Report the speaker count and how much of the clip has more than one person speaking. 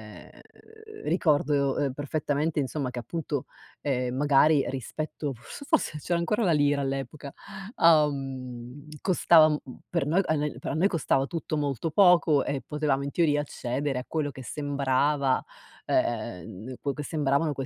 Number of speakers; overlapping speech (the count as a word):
one, no overlap